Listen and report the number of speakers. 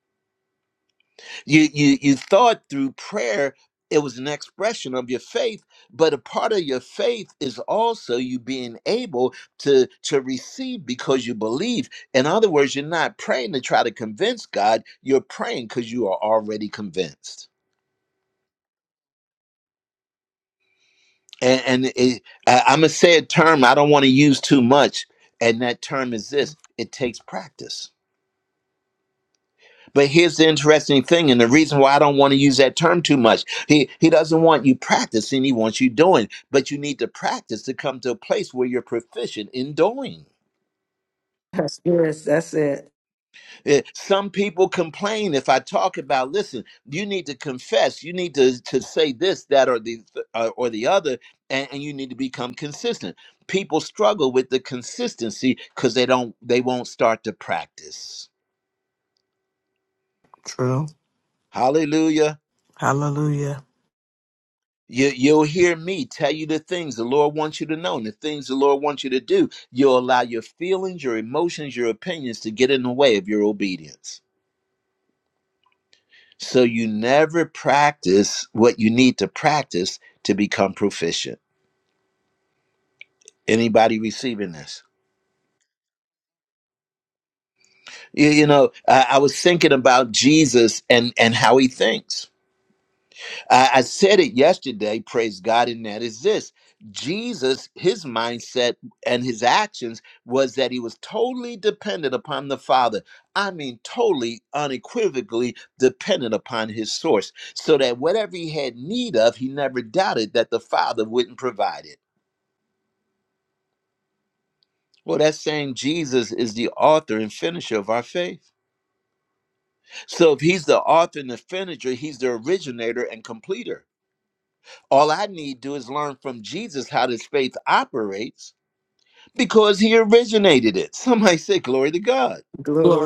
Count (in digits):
3